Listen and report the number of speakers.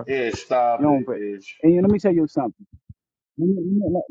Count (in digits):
2